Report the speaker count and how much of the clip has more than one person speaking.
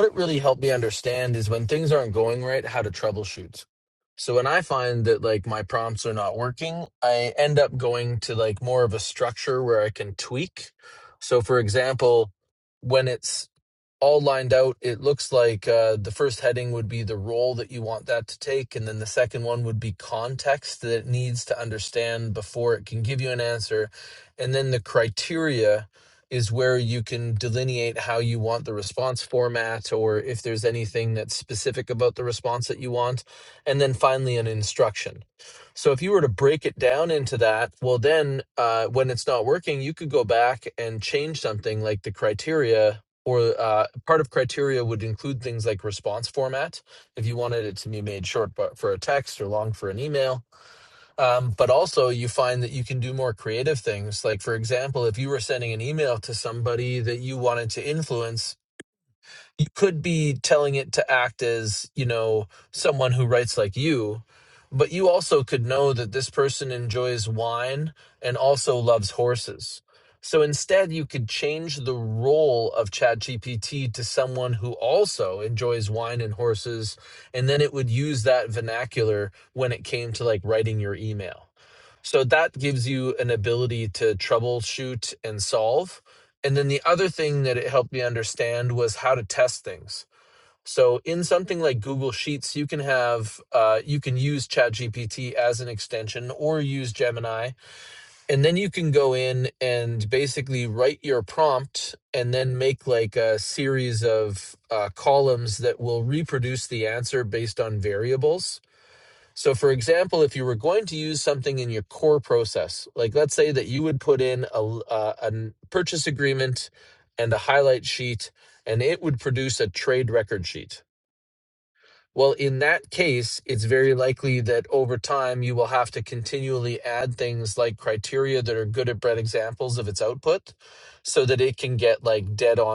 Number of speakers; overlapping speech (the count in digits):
1, no overlap